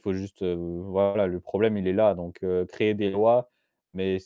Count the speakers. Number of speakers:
1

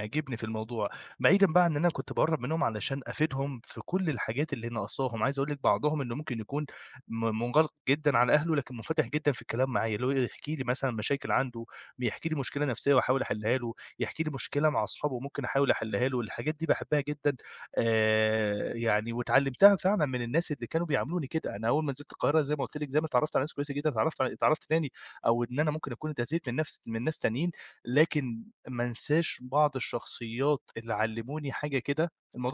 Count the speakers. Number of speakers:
1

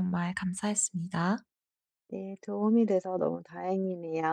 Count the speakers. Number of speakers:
2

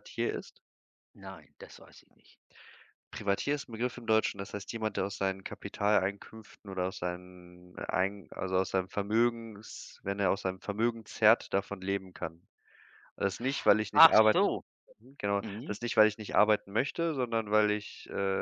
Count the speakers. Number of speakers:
2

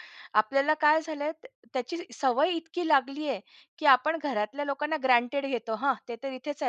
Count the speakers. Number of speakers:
1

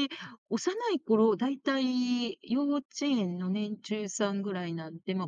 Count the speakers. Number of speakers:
1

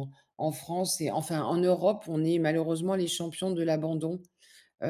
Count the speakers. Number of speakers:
1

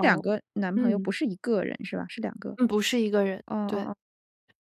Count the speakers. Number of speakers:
2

